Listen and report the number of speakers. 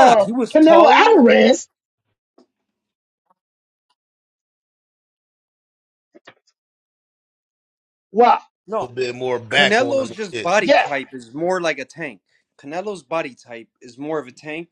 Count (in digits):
3